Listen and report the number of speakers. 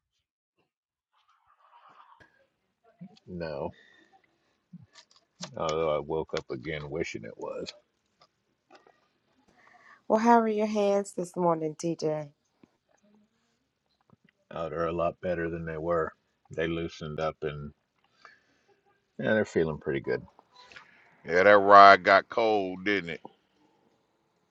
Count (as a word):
three